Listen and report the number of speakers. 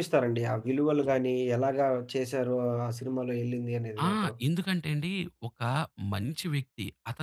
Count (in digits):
2